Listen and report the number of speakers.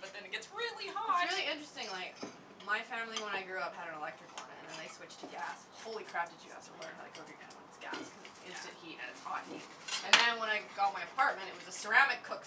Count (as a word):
two